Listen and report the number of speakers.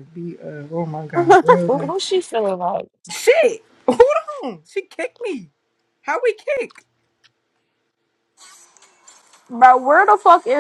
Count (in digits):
3